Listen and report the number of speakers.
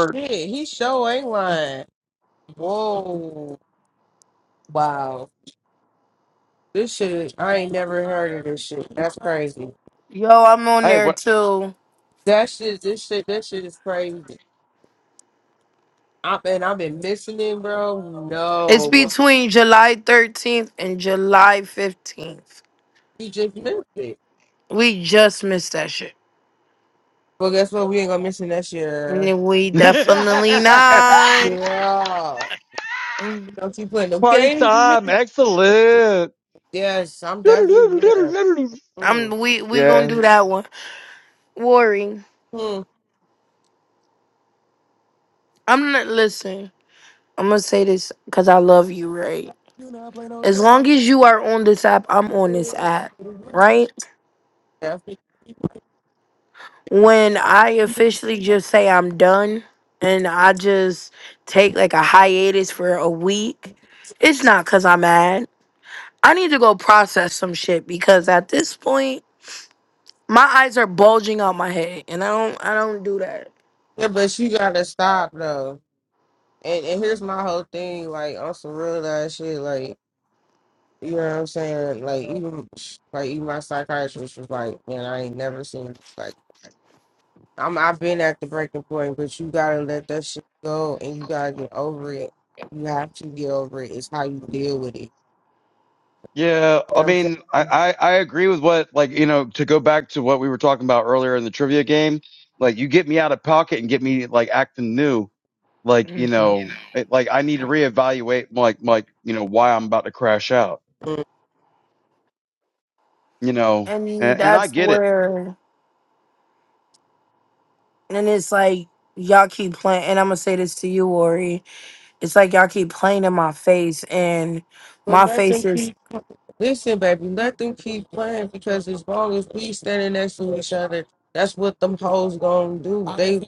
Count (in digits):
3